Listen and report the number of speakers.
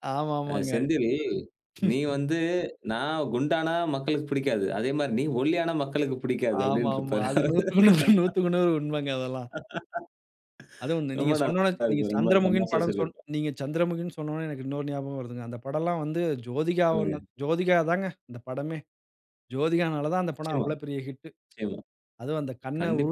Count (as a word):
two